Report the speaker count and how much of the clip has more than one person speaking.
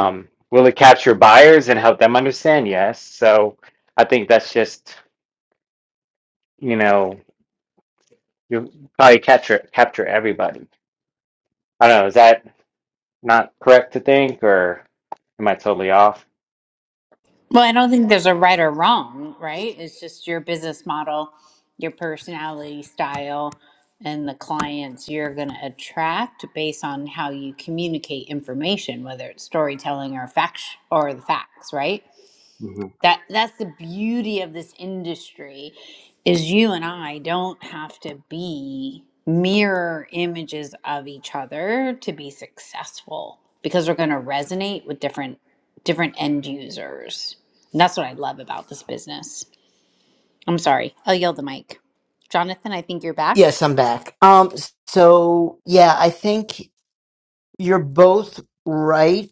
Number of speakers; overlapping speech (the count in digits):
3, under 1%